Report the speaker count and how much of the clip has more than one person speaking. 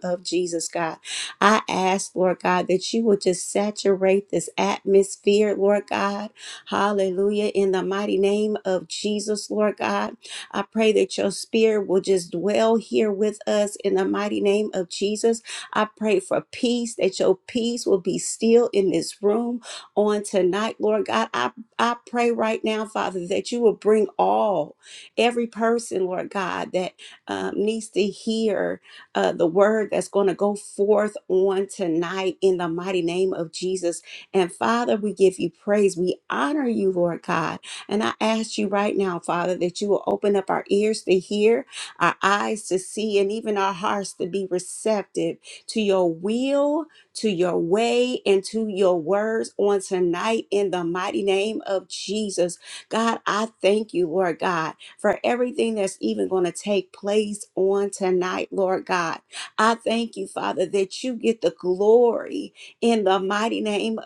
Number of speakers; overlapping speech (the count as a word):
one, no overlap